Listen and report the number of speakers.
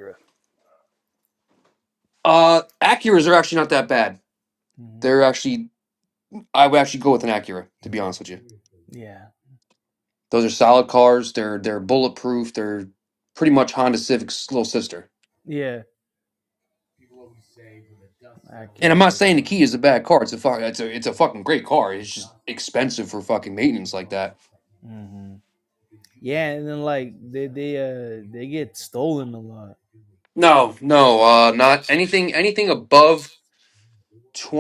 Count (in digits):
2